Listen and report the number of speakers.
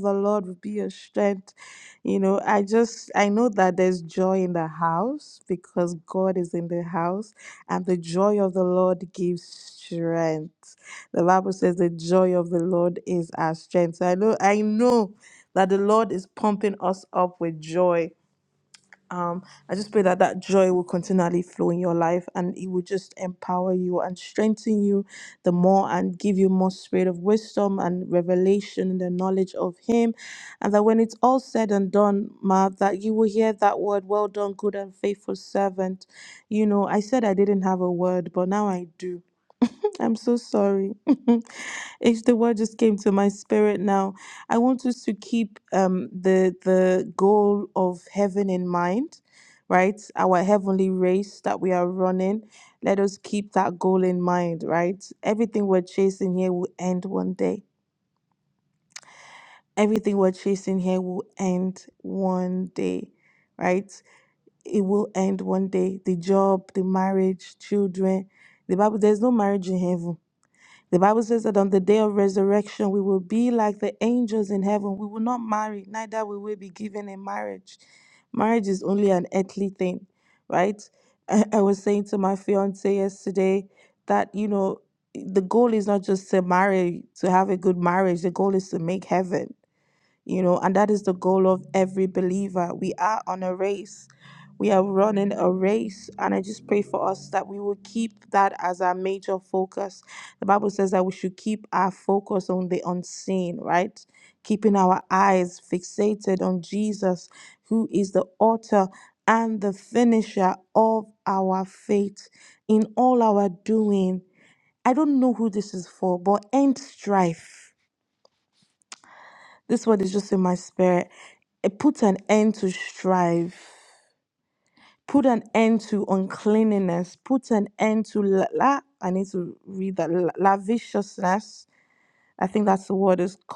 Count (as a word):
one